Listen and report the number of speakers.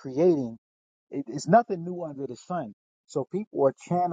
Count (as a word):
one